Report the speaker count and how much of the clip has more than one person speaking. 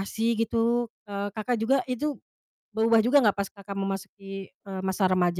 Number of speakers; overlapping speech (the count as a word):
one, no overlap